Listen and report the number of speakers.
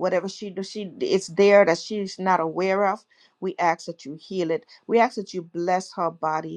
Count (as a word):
one